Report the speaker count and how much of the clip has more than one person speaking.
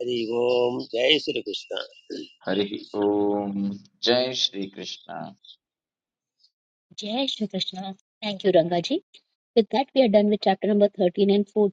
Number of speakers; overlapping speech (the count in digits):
3, no overlap